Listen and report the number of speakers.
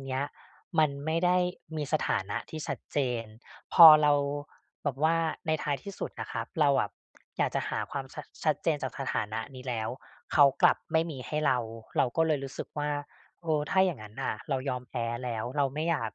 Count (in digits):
1